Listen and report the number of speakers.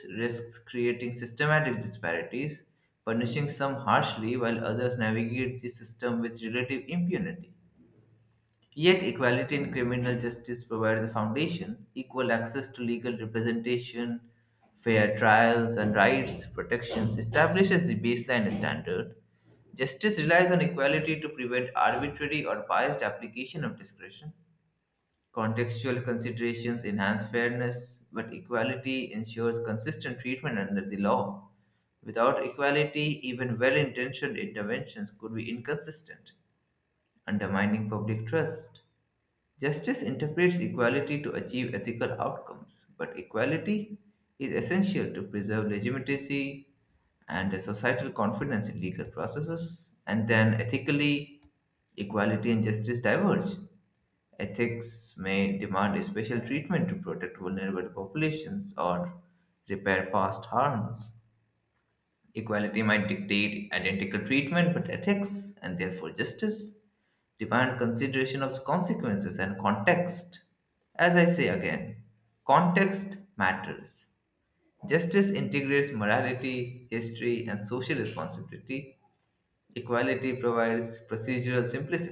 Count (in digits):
1